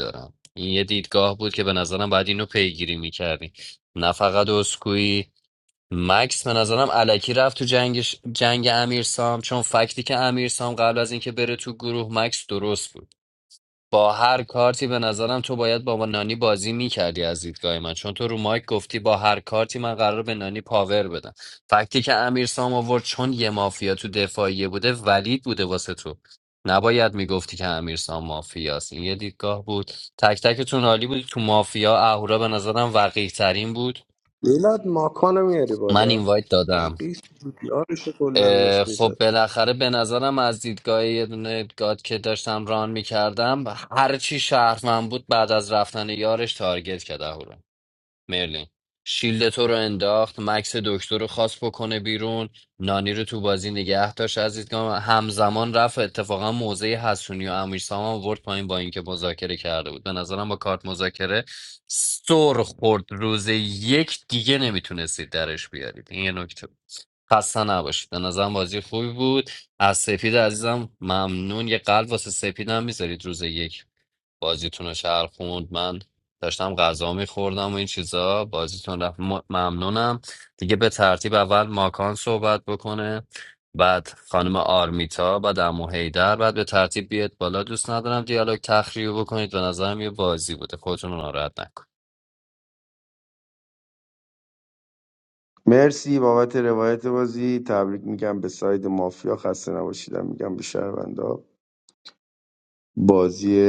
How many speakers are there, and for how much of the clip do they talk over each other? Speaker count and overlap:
3, about 1%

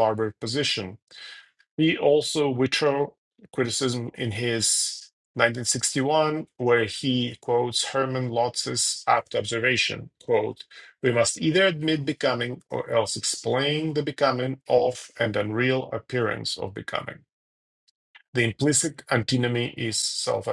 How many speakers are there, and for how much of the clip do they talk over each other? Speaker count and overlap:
1, no overlap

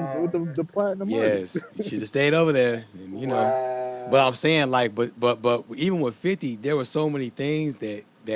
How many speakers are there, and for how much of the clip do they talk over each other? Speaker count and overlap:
3, about 16%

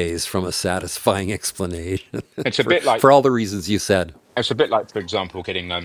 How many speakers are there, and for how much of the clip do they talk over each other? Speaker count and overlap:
2, about 6%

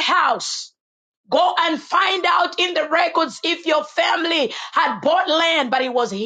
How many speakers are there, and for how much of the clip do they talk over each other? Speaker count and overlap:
1, no overlap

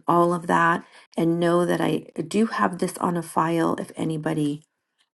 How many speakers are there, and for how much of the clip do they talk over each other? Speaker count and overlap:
1, no overlap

